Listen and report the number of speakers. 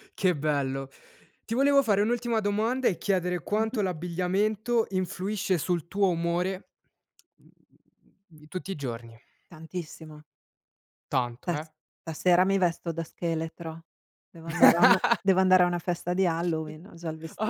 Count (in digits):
2